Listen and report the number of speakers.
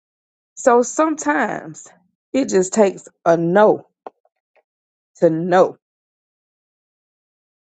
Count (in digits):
1